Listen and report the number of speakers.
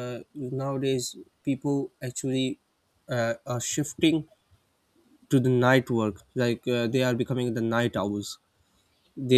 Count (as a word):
one